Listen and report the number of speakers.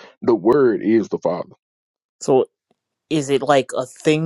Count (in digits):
2